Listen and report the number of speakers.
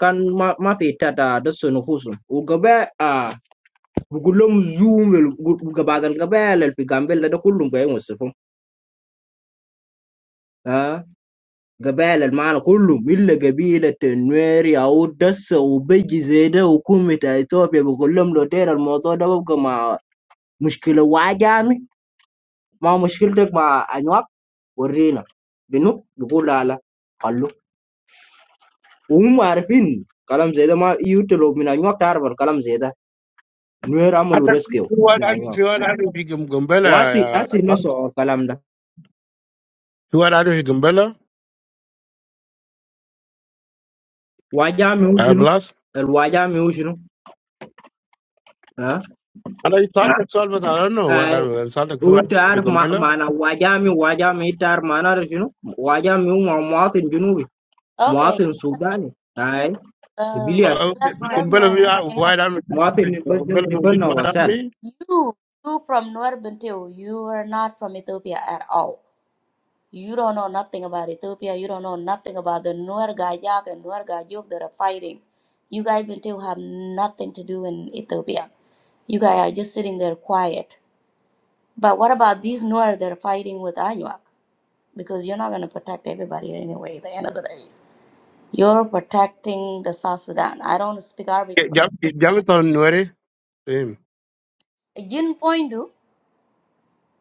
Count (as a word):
three